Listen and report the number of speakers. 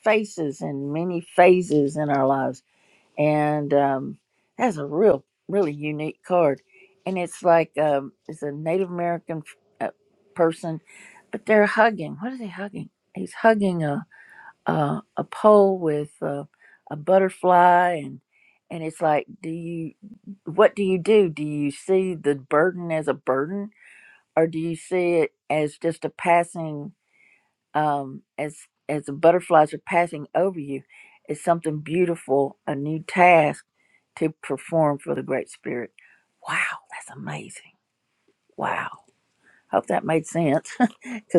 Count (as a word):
one